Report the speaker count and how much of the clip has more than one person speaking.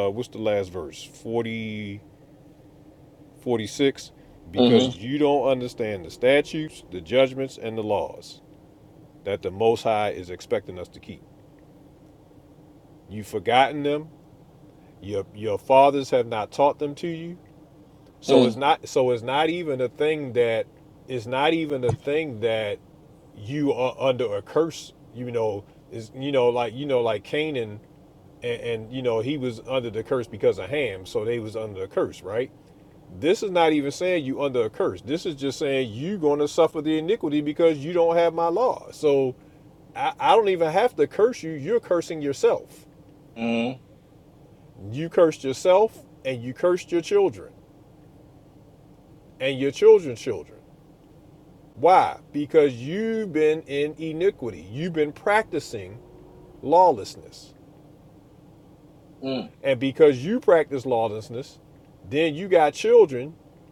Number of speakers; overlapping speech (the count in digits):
2, about 1%